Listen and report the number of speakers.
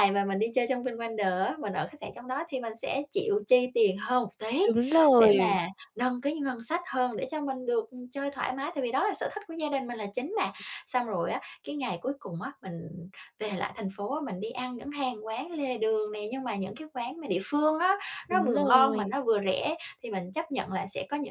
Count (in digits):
2